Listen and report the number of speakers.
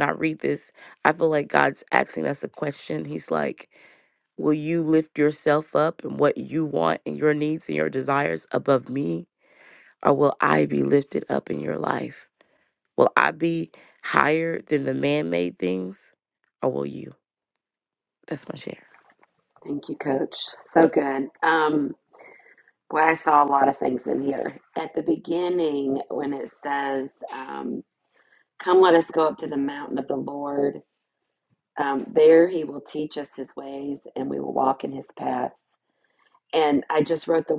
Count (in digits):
2